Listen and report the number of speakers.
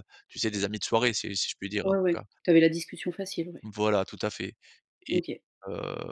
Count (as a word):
two